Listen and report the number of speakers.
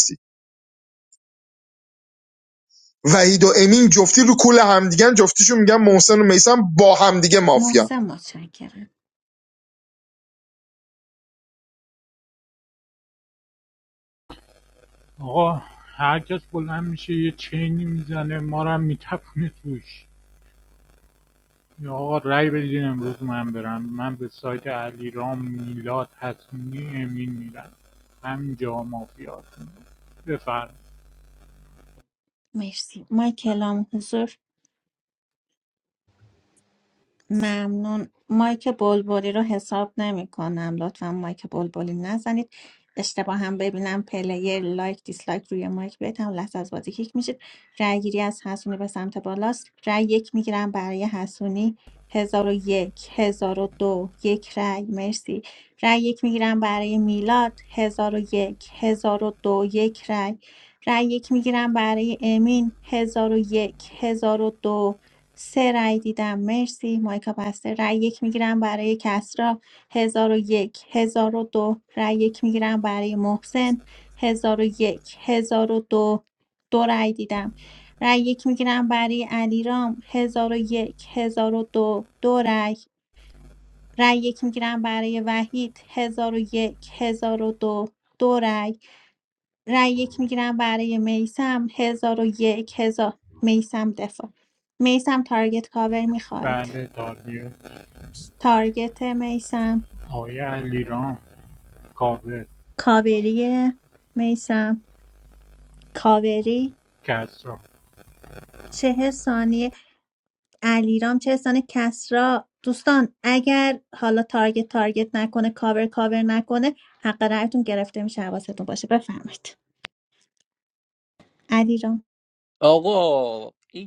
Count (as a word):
four